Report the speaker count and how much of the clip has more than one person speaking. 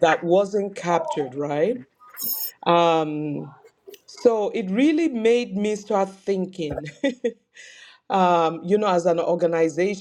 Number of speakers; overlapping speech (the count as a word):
one, no overlap